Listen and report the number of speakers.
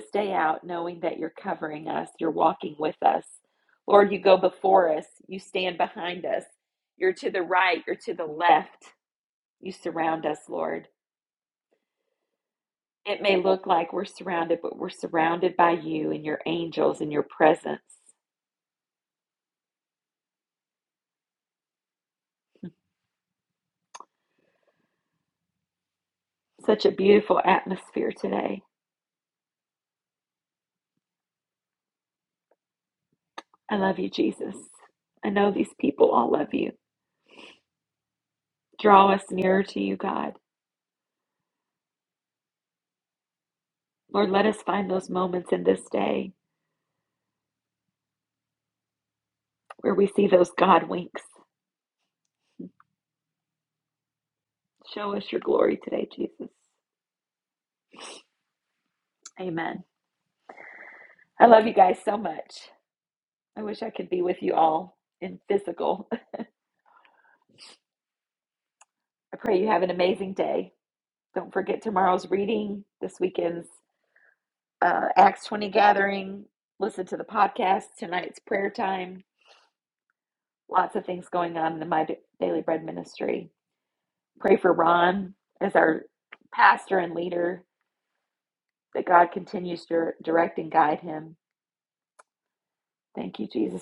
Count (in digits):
1